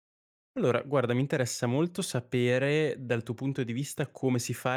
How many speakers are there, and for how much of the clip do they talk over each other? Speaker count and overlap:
1, no overlap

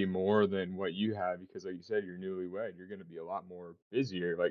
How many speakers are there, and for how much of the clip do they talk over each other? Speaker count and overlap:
1, no overlap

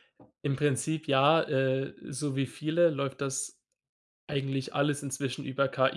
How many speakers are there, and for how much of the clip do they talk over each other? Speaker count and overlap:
1, no overlap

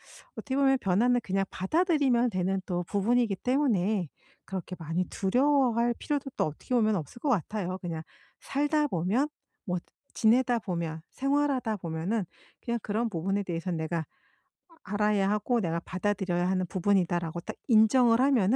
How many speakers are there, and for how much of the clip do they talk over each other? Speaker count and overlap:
1, no overlap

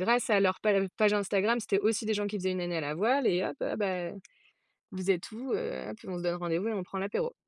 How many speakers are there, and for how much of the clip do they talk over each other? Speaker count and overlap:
1, no overlap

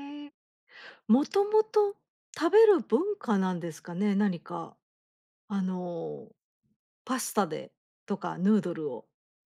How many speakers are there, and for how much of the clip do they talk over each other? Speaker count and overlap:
1, no overlap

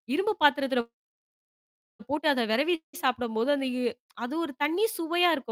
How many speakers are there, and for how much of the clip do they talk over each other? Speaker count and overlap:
1, no overlap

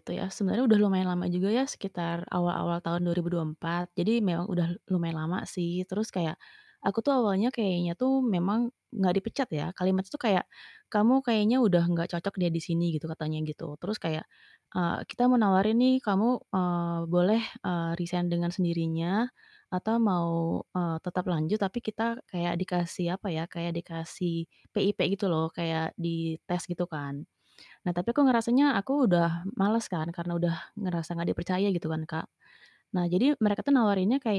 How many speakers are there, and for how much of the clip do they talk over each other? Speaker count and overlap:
1, no overlap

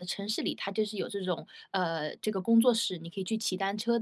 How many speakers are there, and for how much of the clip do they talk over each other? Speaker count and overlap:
1, no overlap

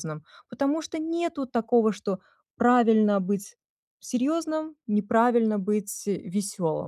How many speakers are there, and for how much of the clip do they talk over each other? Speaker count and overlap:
1, no overlap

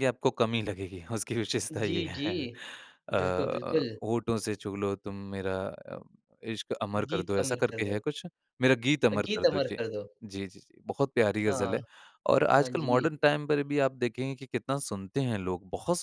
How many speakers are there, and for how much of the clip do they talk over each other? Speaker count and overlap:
2, about 26%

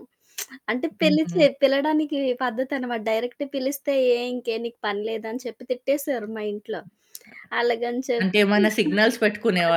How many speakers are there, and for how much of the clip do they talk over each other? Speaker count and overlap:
2, about 5%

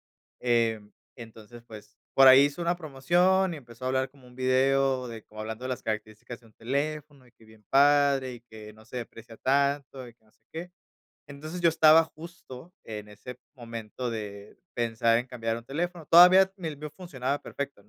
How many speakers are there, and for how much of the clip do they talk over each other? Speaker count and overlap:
1, no overlap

